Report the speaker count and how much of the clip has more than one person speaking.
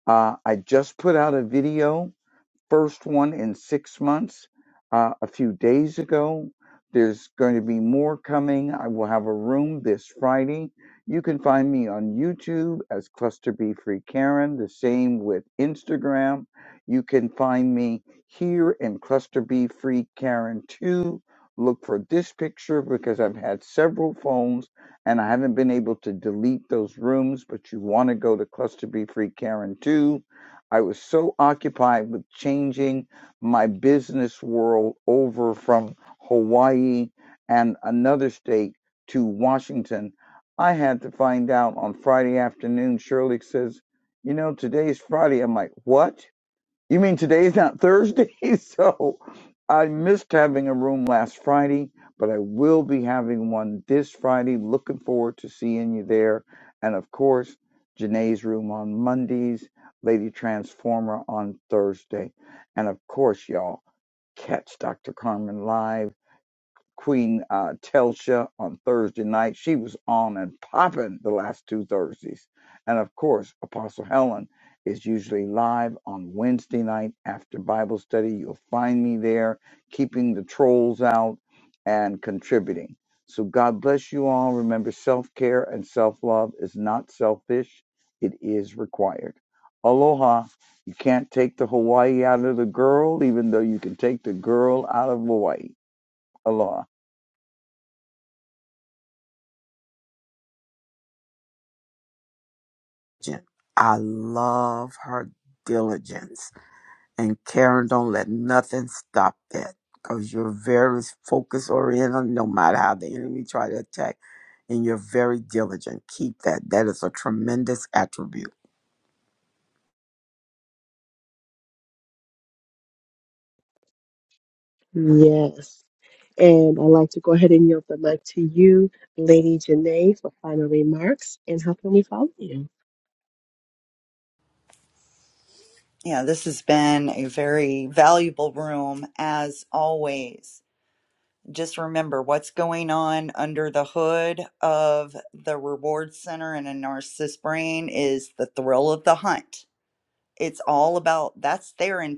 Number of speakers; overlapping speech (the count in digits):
4, no overlap